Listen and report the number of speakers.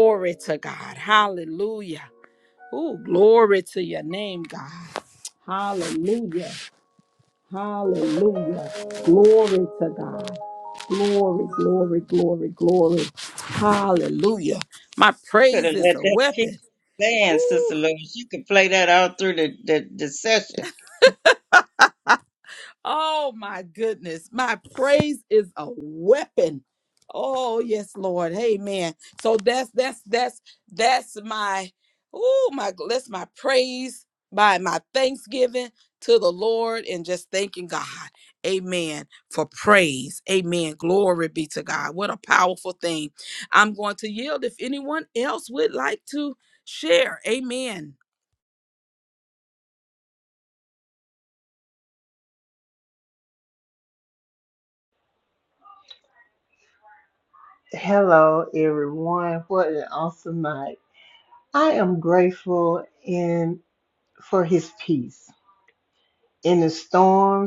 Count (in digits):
3